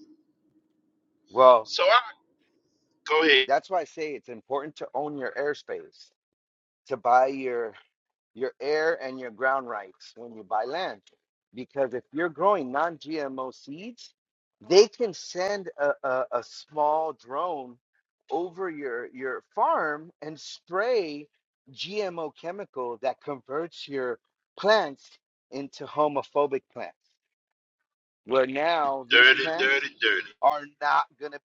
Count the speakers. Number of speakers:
2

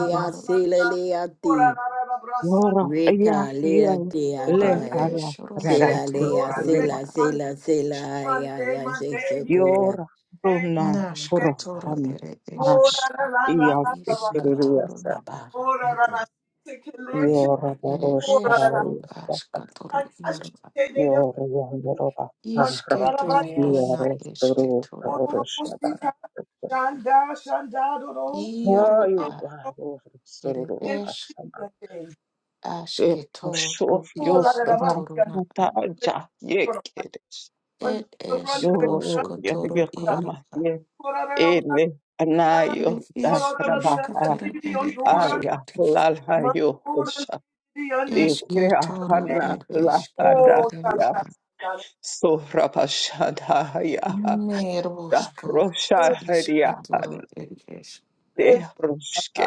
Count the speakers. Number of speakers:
4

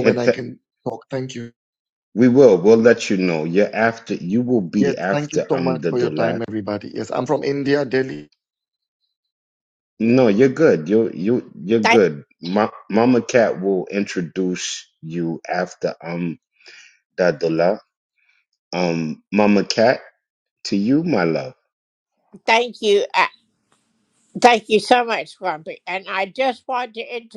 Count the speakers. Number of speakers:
3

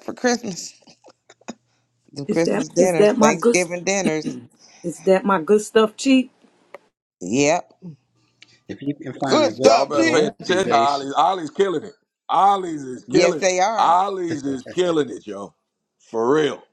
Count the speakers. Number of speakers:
4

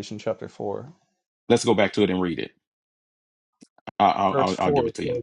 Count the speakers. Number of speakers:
2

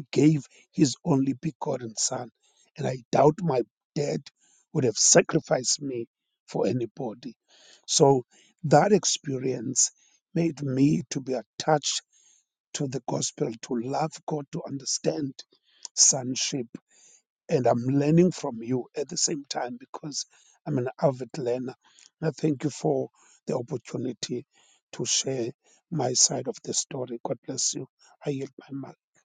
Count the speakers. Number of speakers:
1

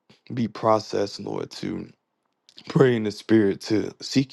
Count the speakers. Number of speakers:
1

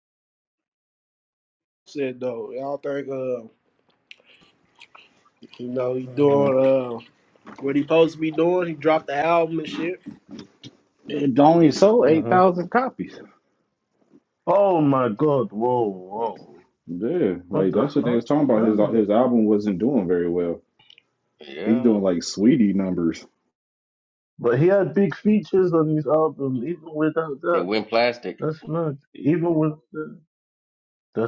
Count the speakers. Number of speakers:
4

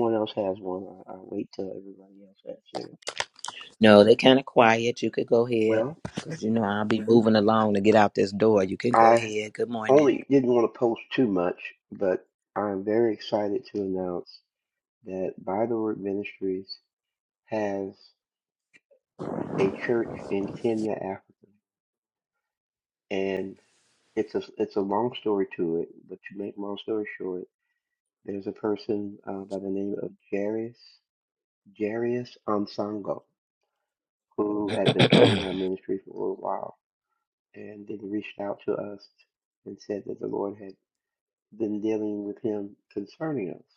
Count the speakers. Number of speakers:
2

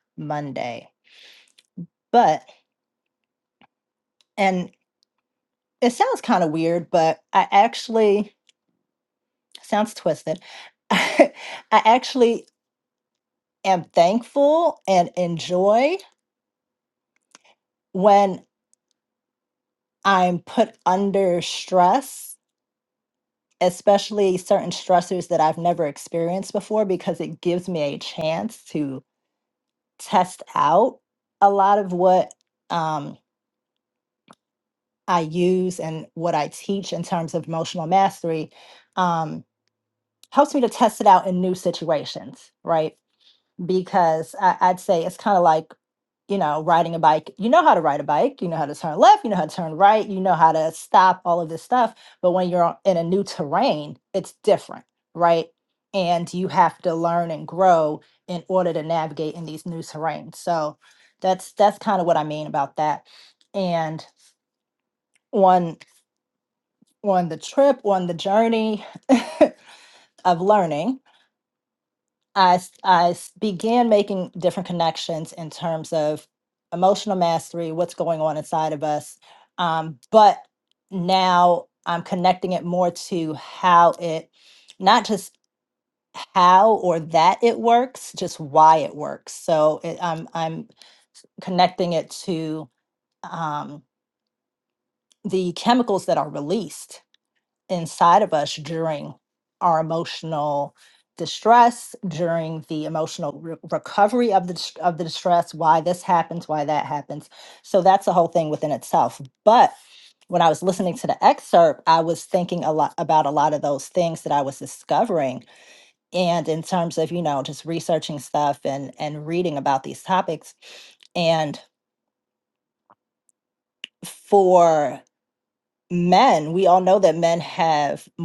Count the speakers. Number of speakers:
1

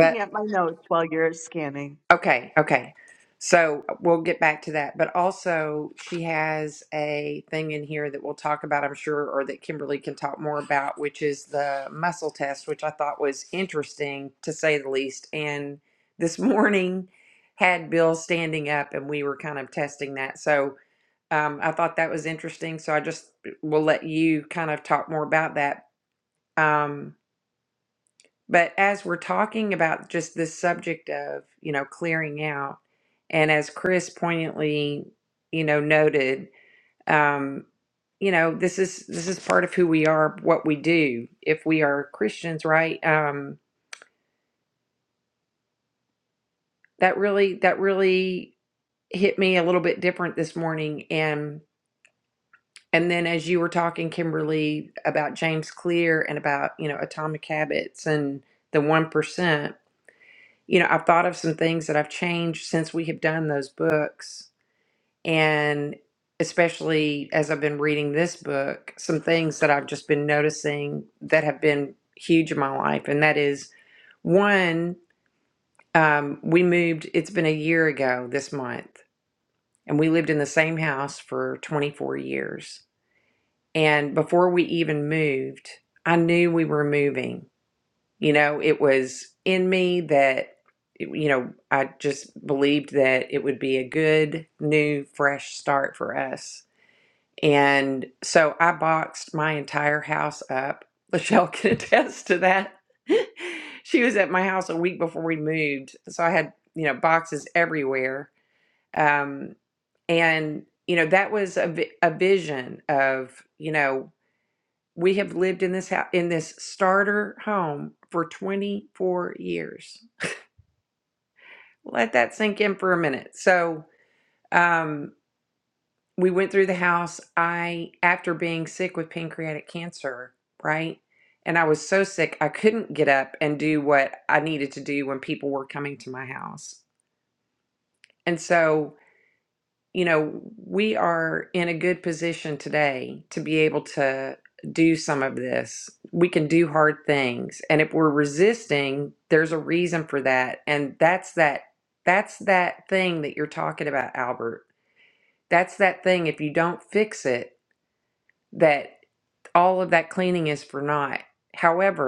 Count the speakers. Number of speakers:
2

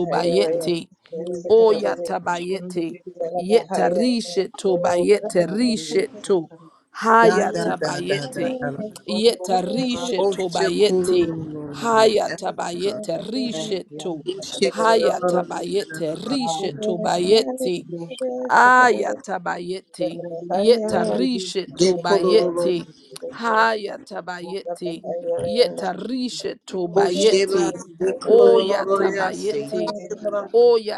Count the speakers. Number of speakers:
4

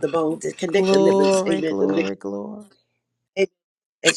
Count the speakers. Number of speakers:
2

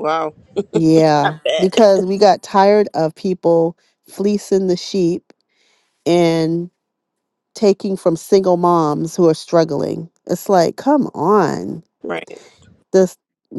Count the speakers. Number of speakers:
2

